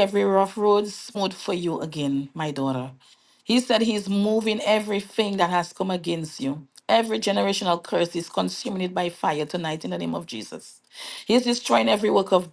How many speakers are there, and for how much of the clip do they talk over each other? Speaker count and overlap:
one, no overlap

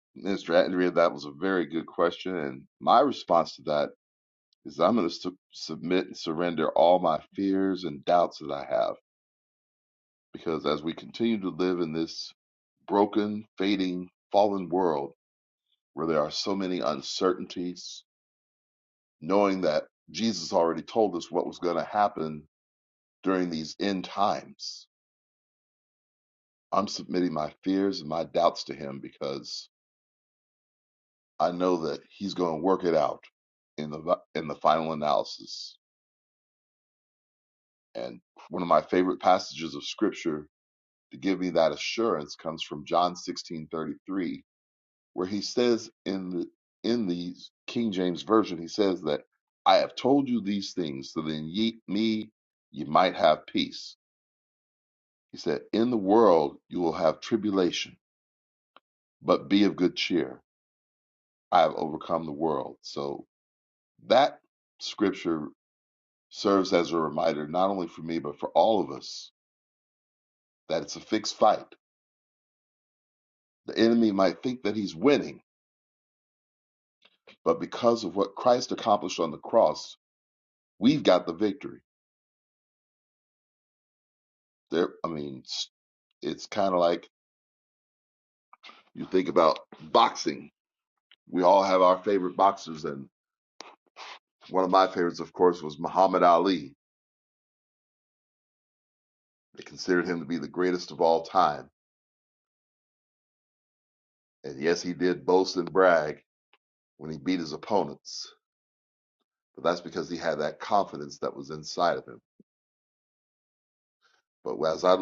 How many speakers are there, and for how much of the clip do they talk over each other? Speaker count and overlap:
one, no overlap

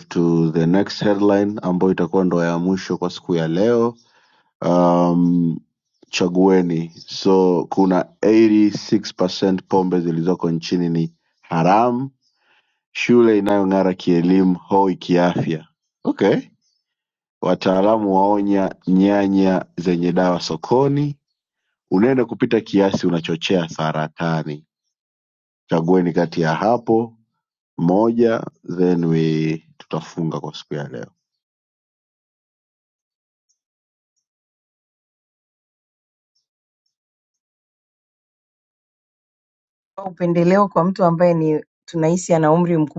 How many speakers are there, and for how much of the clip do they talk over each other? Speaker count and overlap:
two, no overlap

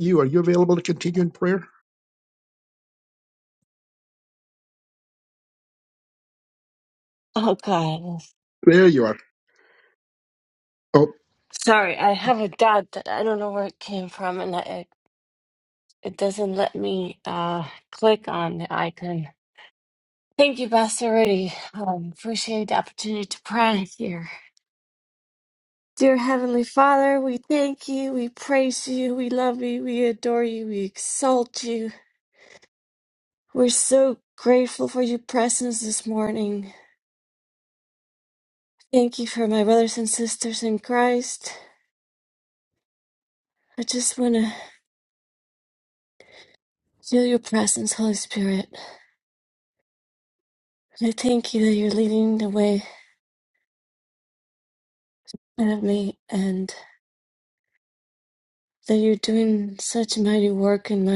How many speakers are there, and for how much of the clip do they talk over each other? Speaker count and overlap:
two, no overlap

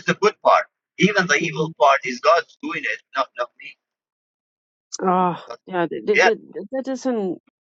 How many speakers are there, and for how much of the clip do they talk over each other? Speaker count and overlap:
two, about 8%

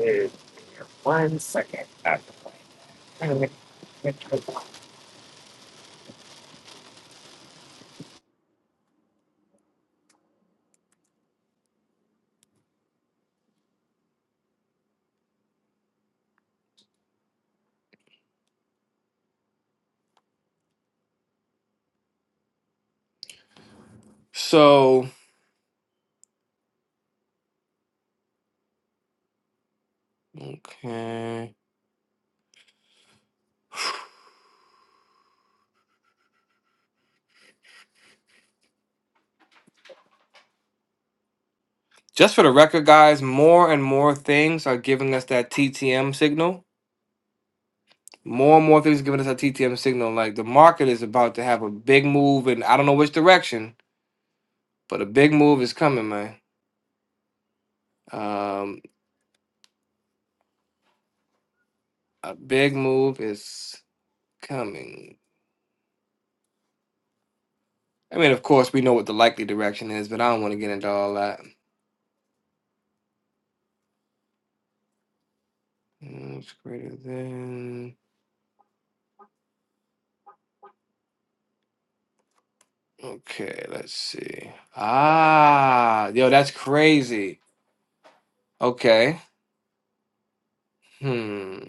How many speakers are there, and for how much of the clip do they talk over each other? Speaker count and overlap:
two, no overlap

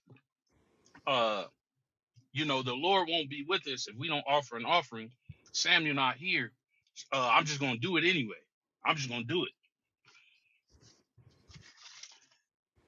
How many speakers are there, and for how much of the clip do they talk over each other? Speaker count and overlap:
one, no overlap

